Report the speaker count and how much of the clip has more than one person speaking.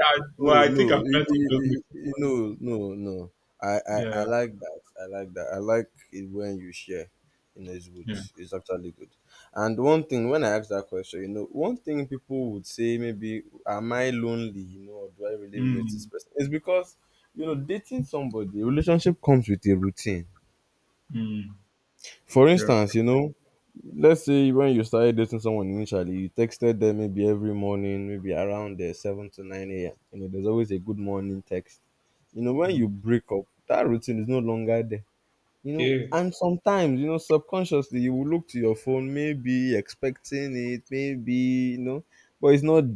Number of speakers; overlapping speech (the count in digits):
2, about 7%